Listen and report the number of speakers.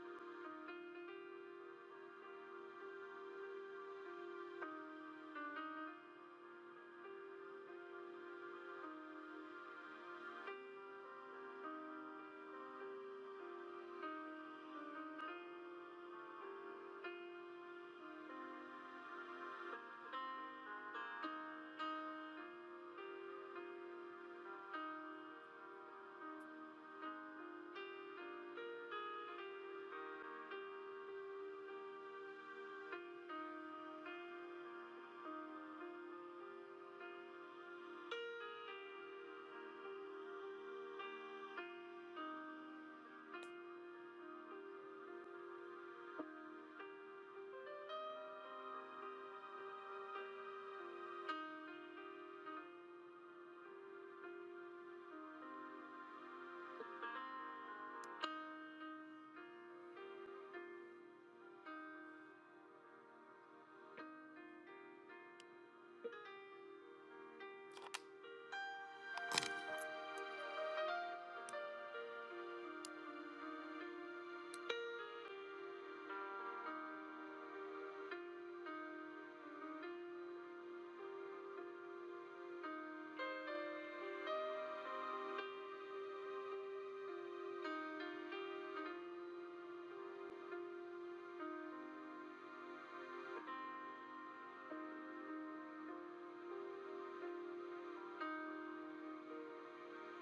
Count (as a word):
zero